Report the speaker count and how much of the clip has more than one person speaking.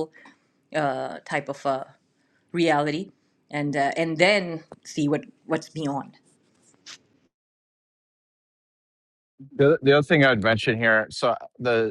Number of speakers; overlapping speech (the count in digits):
2, no overlap